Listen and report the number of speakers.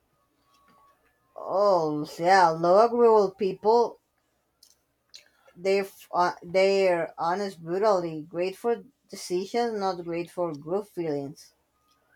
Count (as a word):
one